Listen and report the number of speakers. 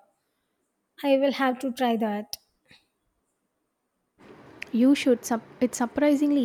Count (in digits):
2